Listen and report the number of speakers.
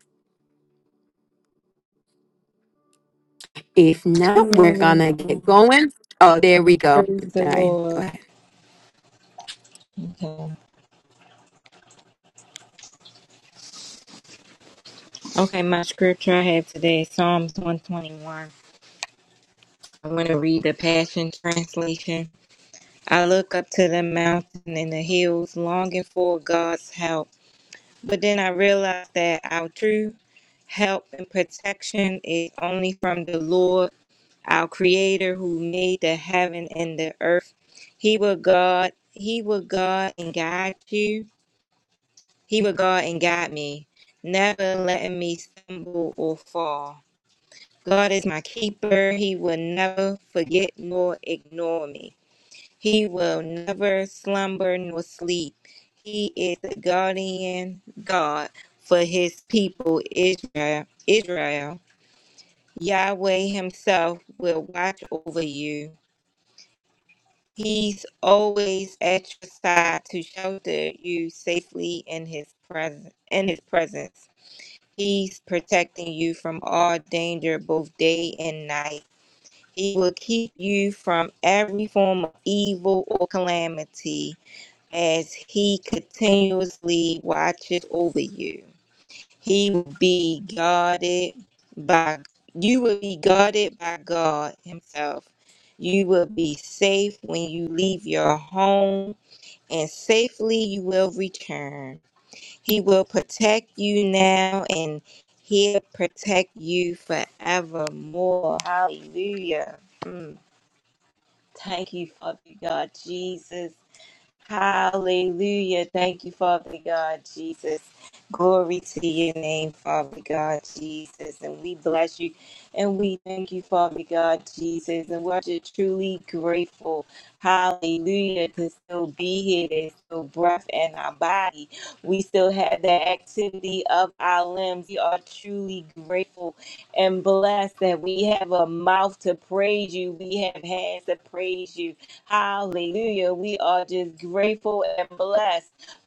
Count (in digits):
2